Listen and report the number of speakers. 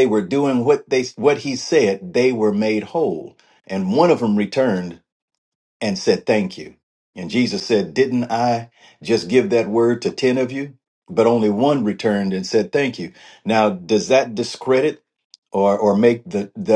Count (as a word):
one